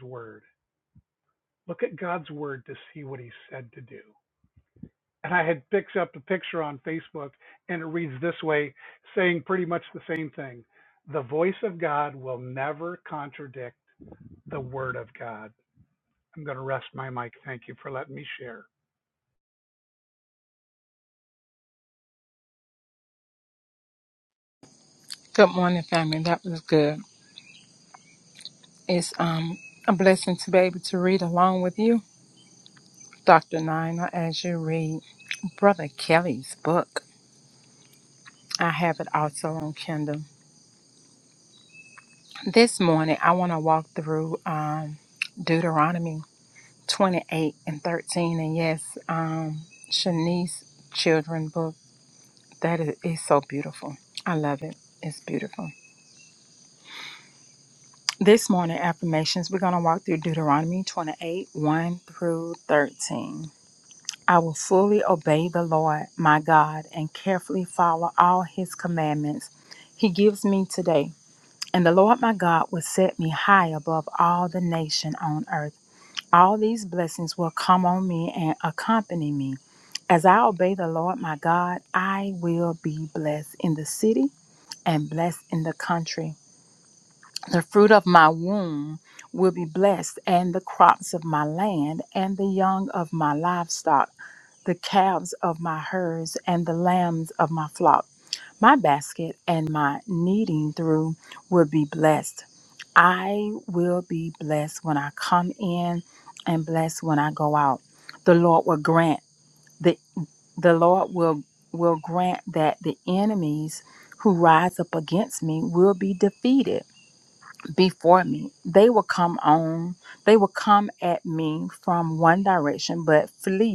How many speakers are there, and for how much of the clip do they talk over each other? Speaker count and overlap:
two, no overlap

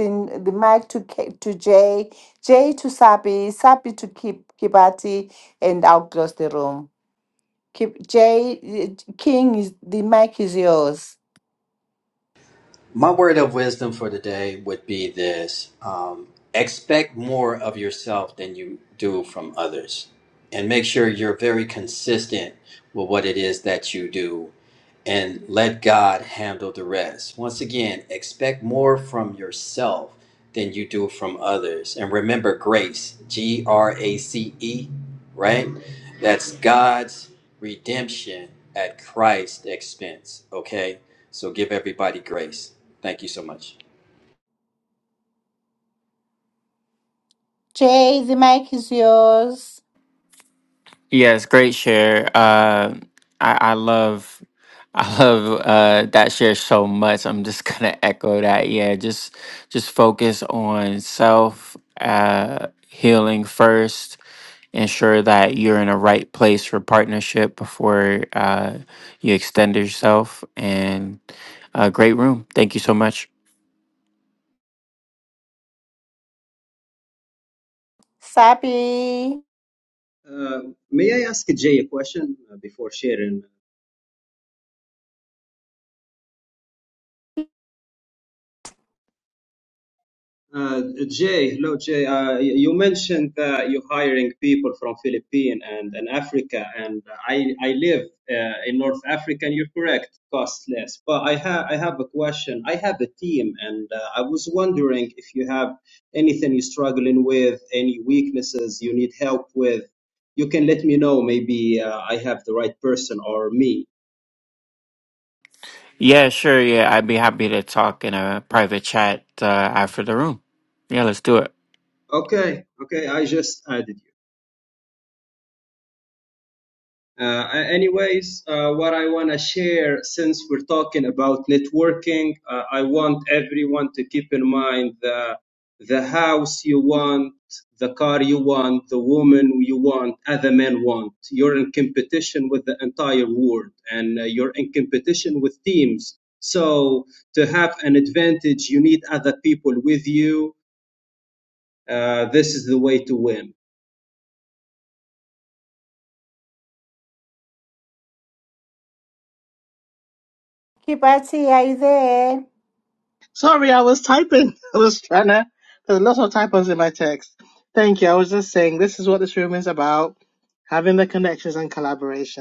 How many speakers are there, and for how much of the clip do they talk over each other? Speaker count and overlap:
five, no overlap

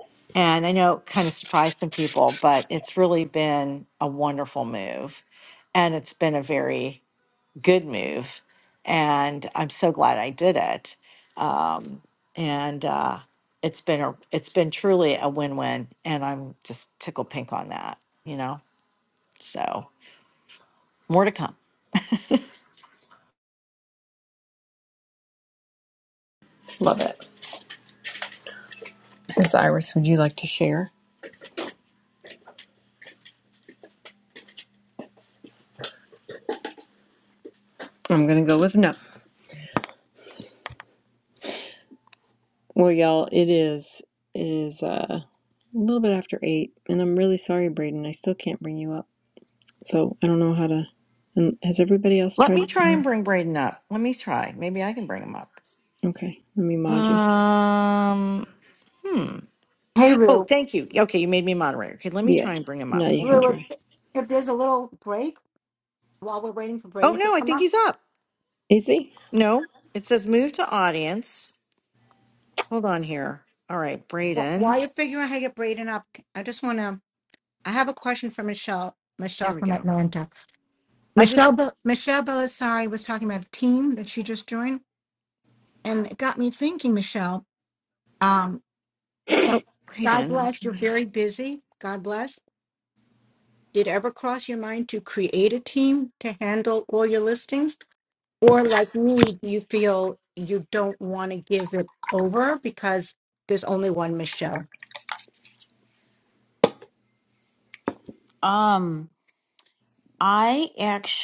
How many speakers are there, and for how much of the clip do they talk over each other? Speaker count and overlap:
four, about 4%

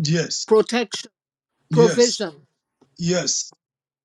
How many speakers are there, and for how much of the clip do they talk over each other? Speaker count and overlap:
two, about 10%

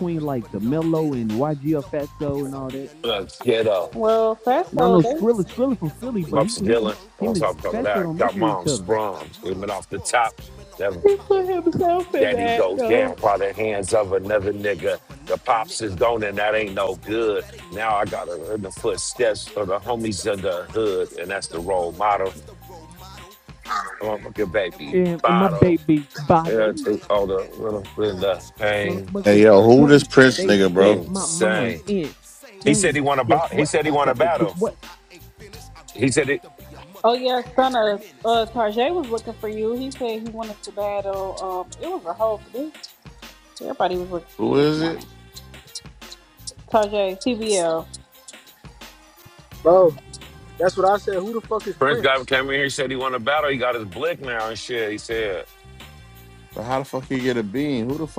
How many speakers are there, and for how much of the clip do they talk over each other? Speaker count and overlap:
five, about 18%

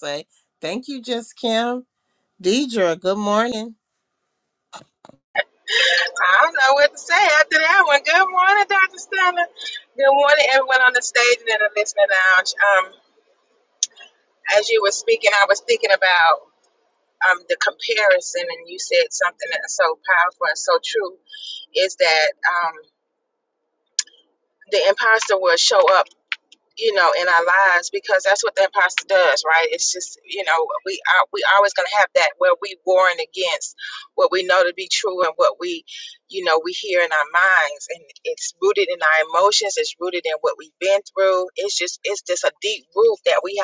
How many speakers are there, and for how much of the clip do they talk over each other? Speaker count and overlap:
two, no overlap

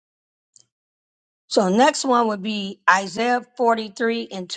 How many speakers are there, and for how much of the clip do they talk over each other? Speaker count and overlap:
one, no overlap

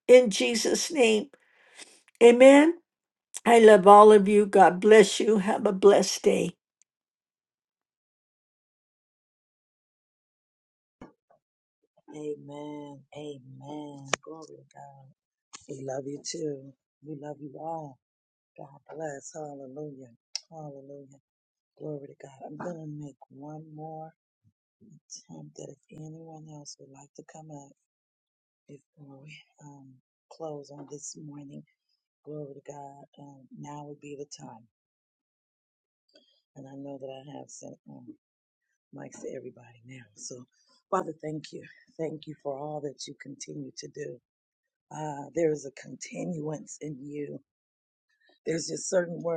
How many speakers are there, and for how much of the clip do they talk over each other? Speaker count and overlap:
two, no overlap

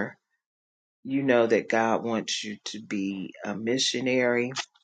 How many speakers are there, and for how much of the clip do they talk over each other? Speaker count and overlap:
one, no overlap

